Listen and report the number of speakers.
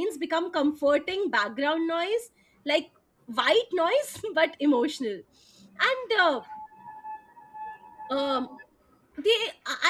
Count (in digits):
1